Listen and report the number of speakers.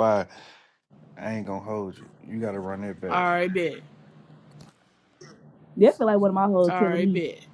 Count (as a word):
three